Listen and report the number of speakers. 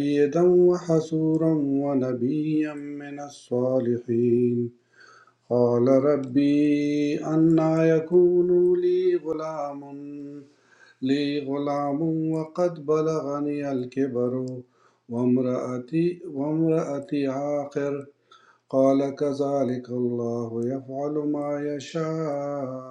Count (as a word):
one